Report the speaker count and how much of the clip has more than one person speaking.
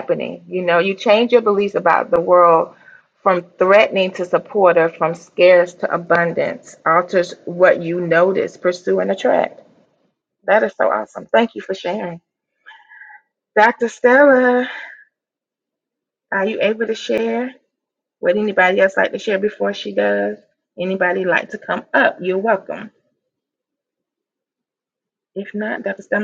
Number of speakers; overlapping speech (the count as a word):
one, no overlap